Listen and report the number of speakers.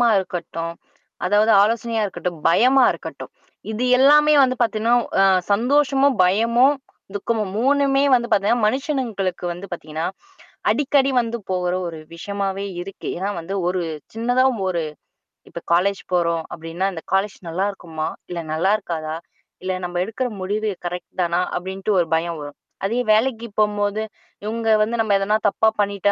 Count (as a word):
one